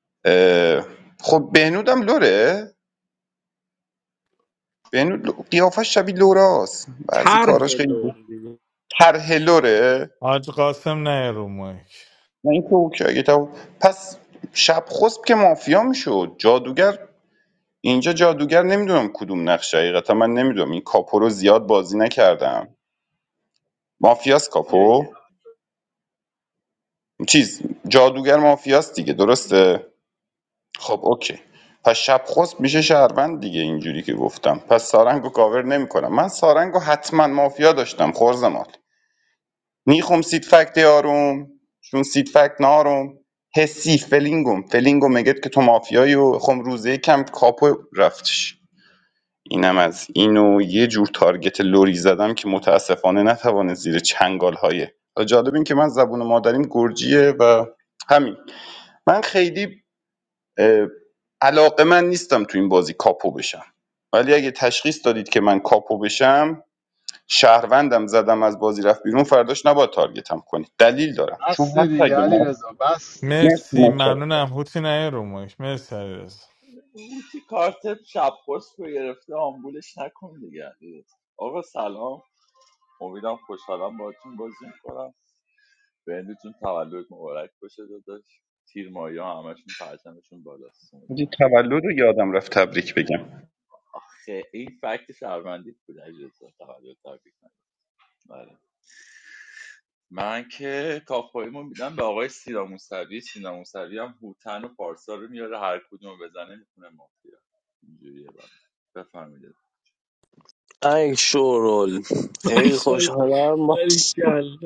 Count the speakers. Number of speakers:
6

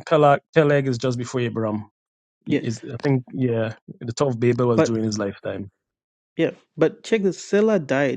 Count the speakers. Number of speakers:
2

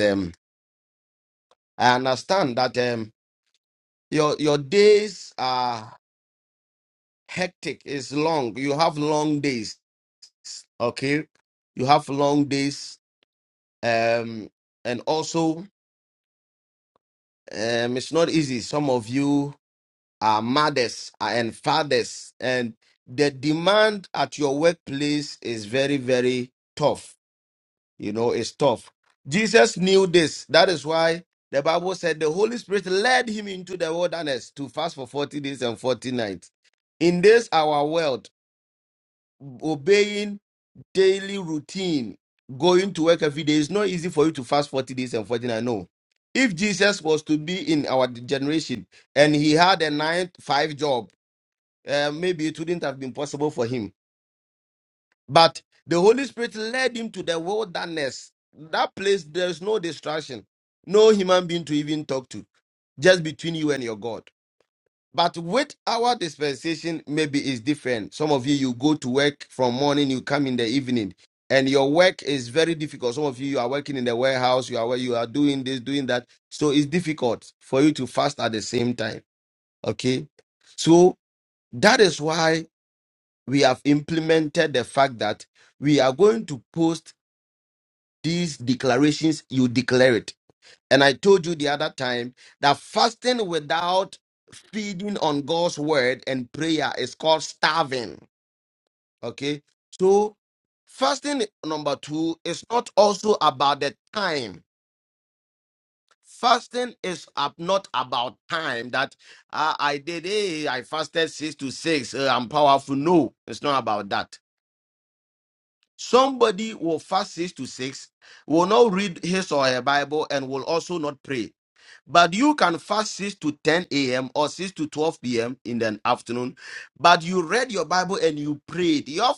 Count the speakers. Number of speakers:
1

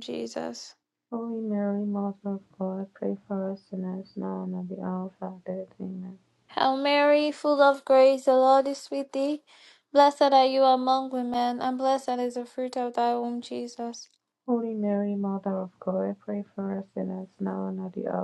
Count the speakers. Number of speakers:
2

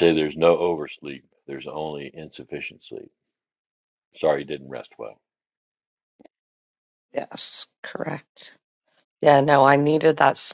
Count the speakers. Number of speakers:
2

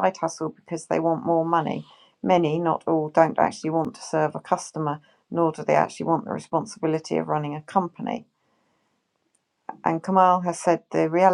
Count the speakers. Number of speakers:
1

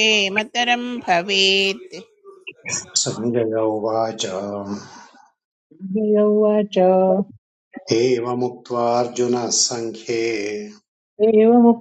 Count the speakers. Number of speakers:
3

